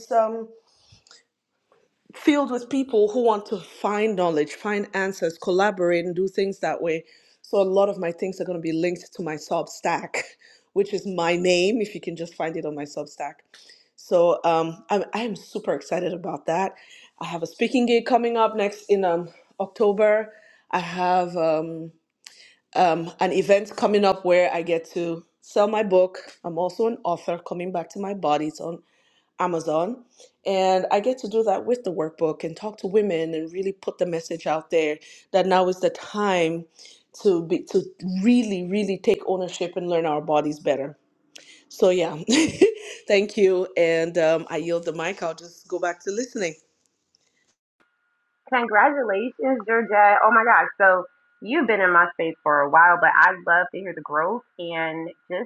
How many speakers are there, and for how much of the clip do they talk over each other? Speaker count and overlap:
2, no overlap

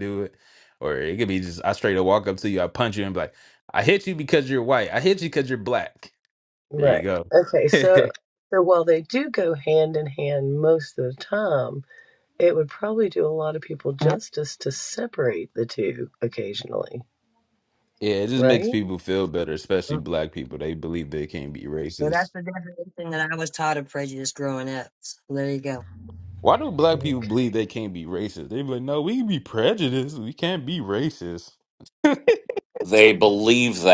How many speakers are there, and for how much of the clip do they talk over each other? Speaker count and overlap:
4, about 5%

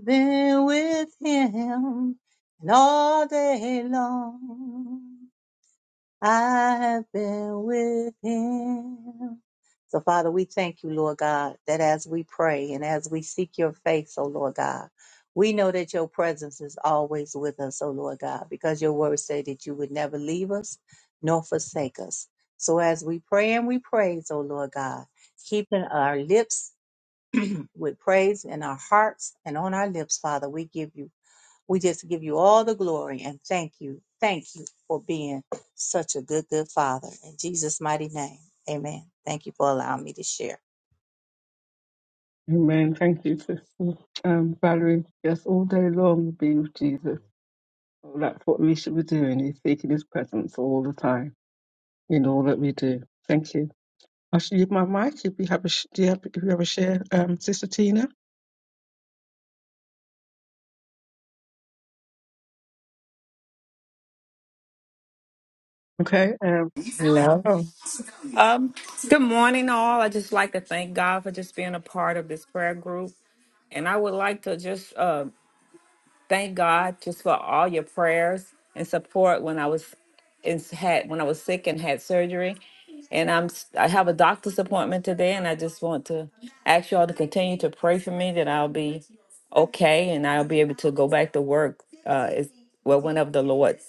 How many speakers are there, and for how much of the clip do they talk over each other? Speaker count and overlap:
3, under 1%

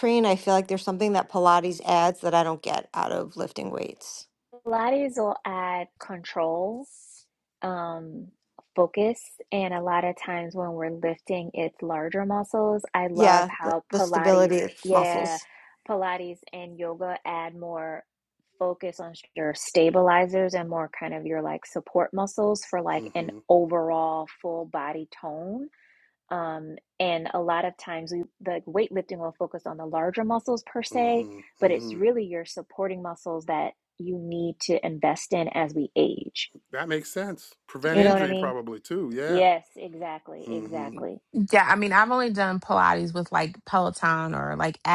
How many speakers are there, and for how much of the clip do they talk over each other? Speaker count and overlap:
4, about 10%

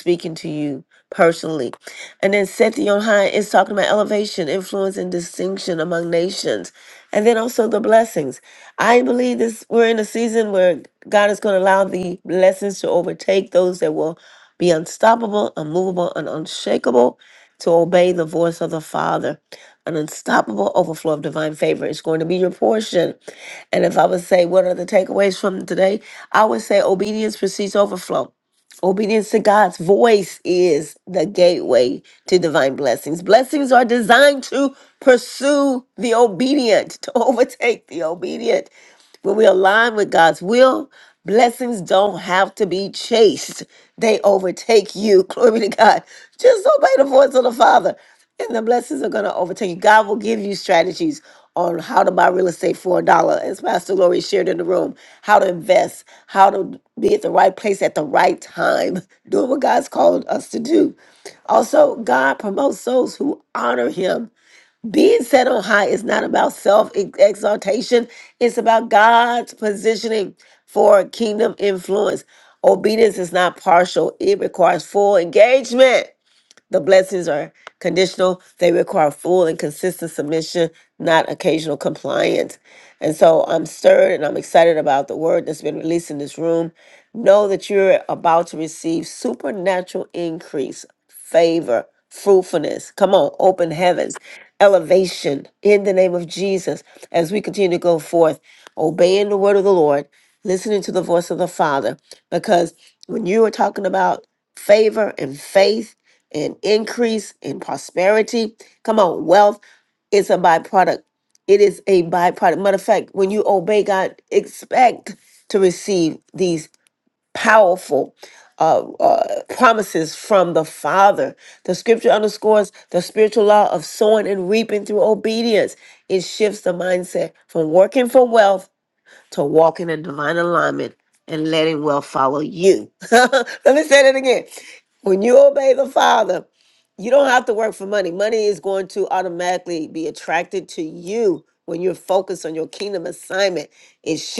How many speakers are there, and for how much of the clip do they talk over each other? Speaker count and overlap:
1, no overlap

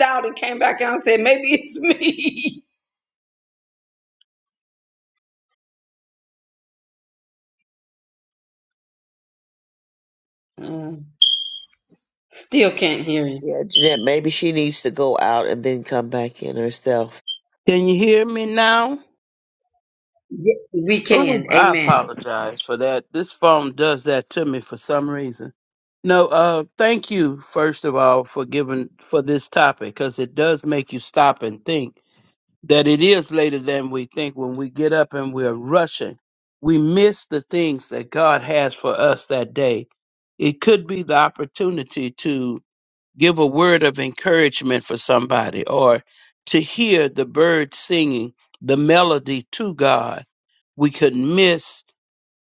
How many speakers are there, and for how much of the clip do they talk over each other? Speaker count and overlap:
3, about 2%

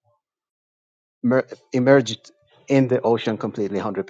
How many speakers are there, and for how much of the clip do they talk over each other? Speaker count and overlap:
1, no overlap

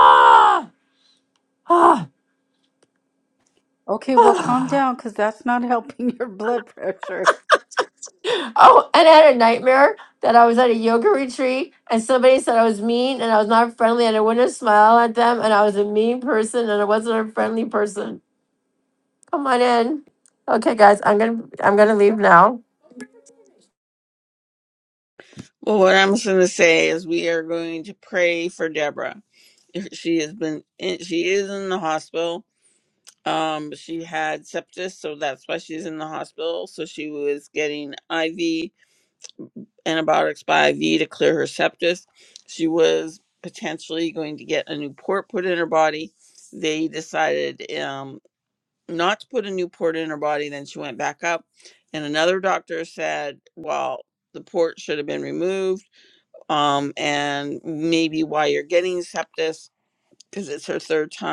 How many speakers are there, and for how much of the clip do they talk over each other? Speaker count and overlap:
3, about 1%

